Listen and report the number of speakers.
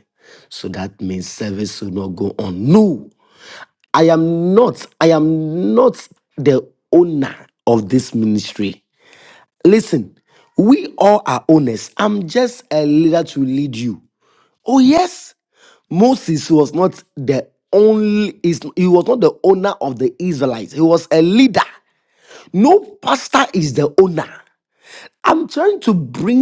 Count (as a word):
one